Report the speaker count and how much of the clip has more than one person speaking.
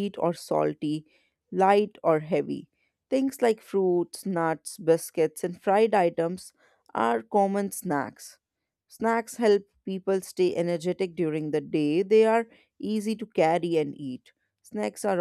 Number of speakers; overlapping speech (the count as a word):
one, no overlap